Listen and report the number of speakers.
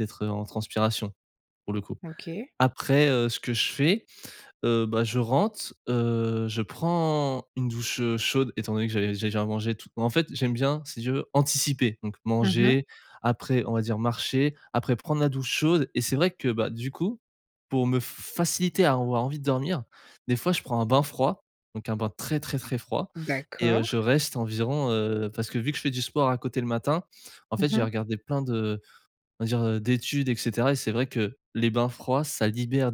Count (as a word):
two